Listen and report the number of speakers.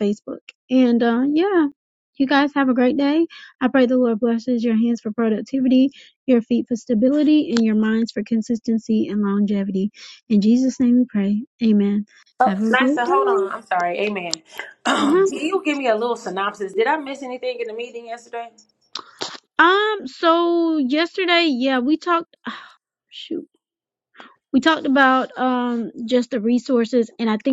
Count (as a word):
two